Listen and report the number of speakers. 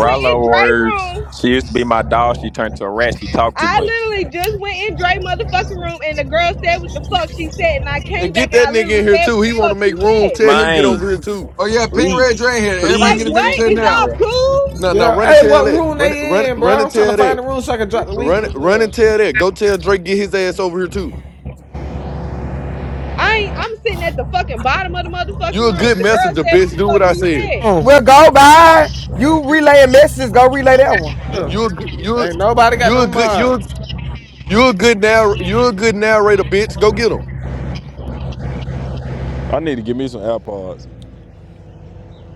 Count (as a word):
seven